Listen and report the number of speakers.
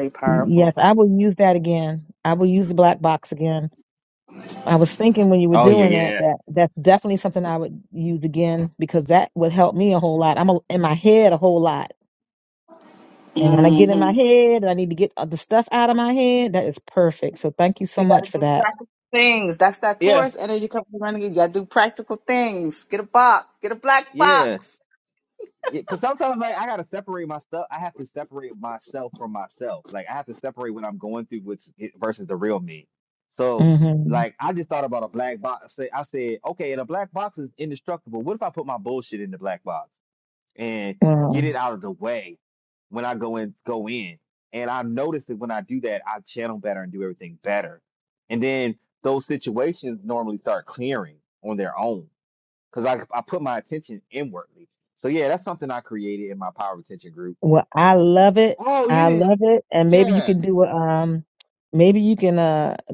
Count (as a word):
three